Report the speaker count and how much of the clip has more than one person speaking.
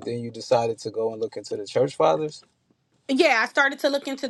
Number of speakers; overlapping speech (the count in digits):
2, no overlap